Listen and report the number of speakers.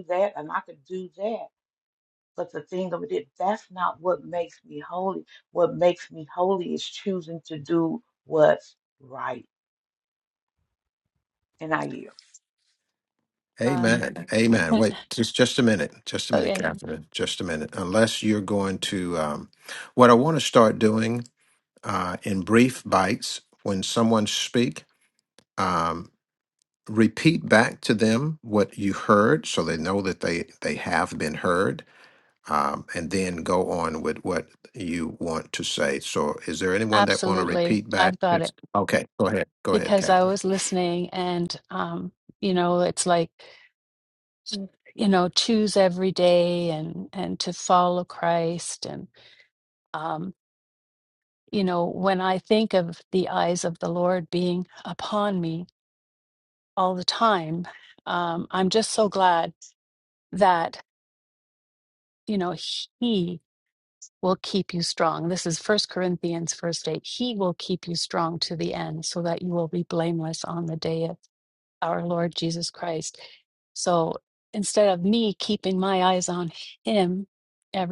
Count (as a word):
three